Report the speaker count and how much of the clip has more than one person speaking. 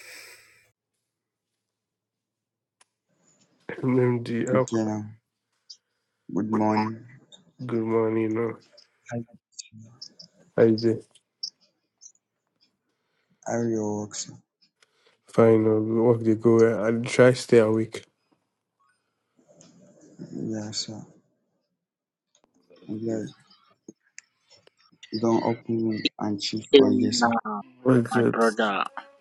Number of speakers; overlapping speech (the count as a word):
three, about 3%